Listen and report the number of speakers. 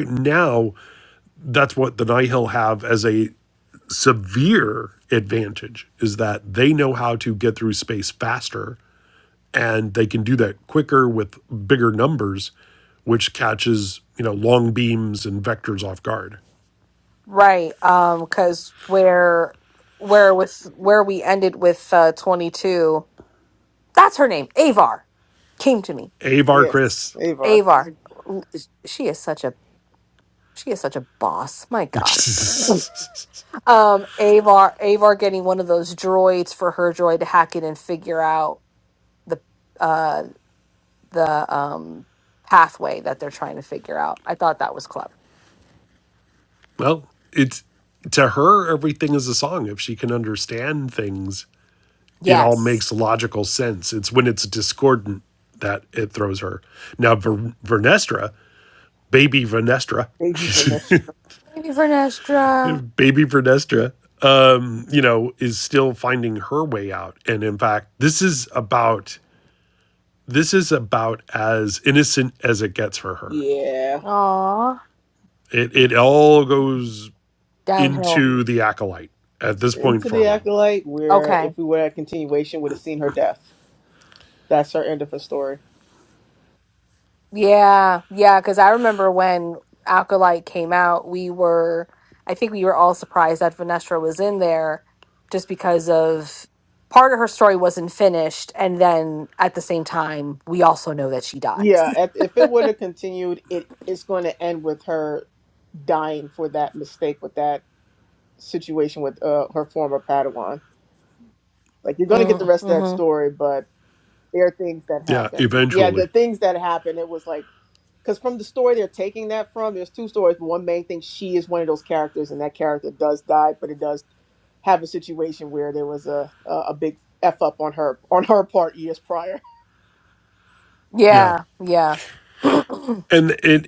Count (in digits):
3